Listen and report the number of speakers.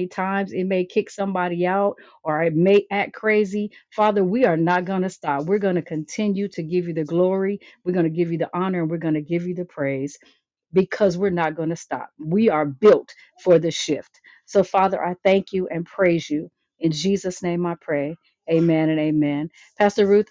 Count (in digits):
1